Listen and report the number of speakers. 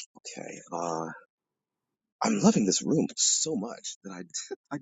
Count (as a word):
one